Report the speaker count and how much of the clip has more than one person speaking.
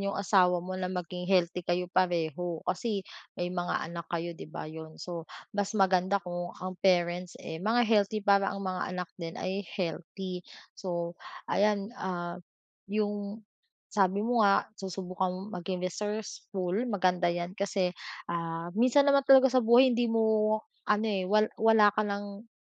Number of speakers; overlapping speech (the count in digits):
1, no overlap